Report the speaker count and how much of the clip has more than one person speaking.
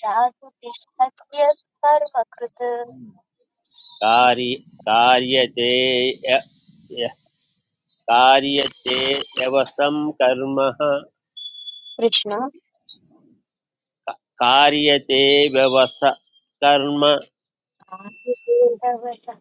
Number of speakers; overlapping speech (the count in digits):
2, no overlap